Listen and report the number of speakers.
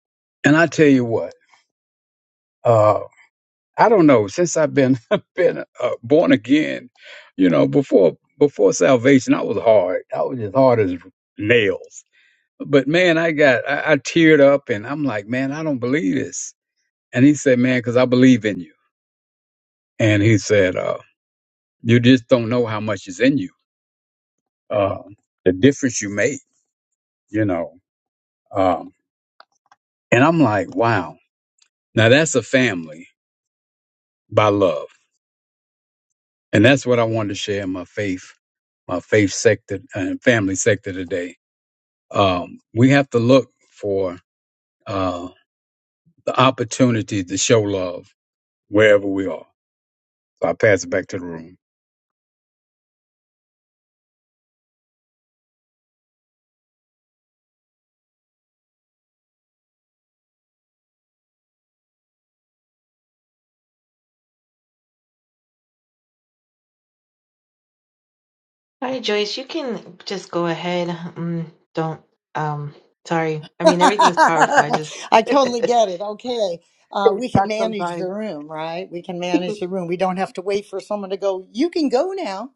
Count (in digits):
3